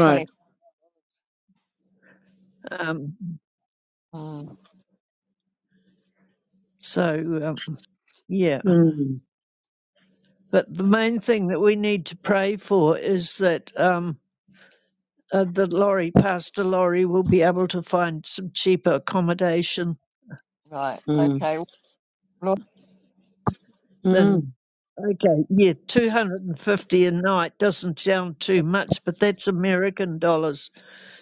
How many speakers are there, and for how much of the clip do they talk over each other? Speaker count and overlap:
three, about 3%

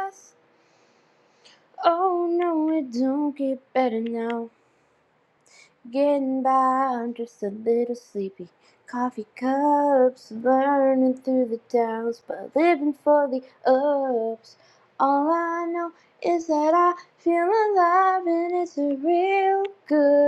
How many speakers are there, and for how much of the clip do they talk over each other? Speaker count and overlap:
one, no overlap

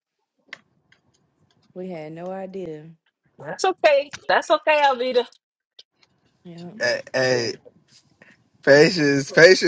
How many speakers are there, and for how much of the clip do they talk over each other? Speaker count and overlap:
three, about 2%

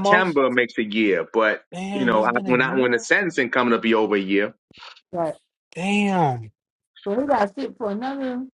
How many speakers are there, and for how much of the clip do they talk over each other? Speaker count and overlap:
three, about 16%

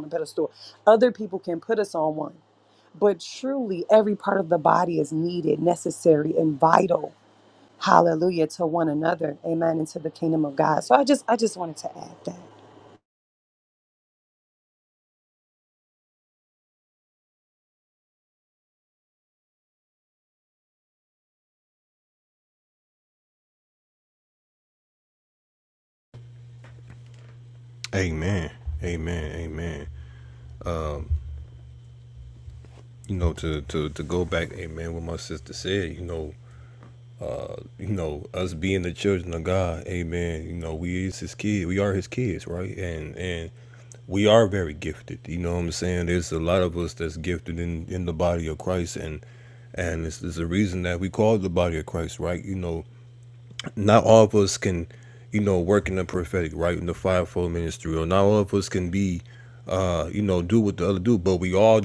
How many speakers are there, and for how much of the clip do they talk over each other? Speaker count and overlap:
two, no overlap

